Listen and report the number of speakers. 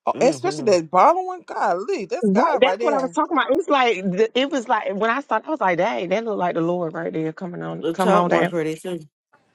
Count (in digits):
3